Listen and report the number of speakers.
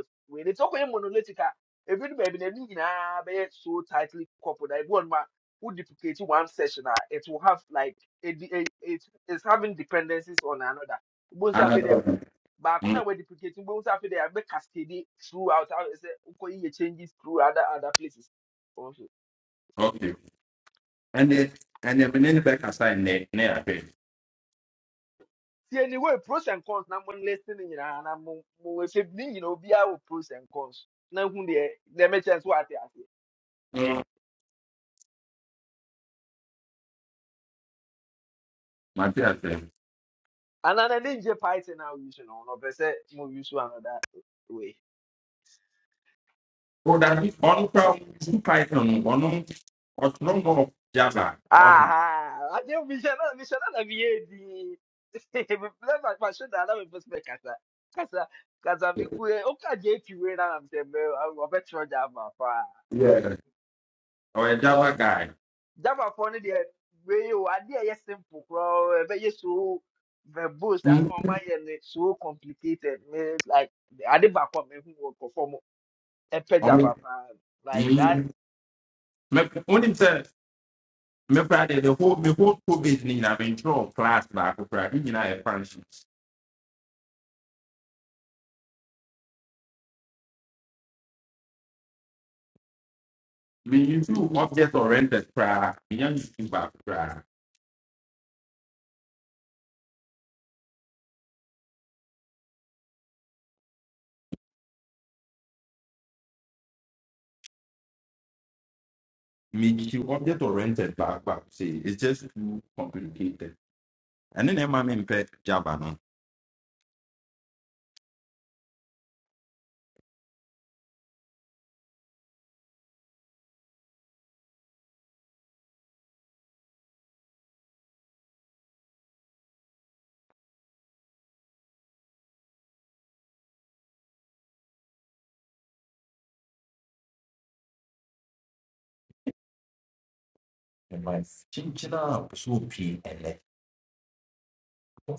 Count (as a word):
two